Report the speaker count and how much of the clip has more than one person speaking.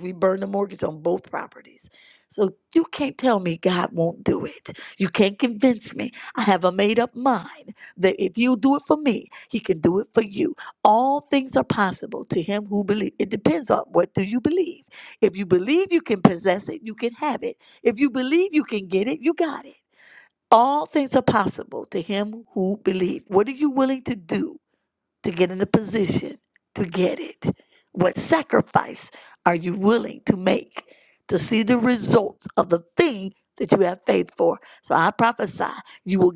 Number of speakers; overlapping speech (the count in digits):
1, no overlap